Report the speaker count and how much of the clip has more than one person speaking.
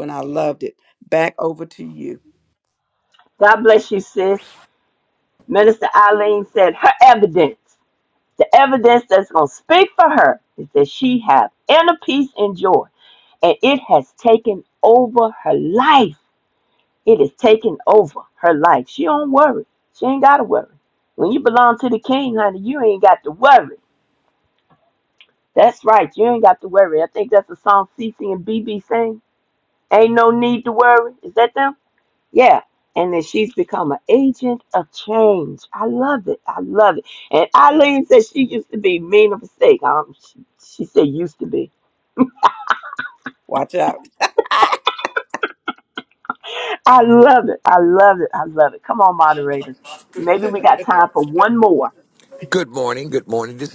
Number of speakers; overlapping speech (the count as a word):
three, no overlap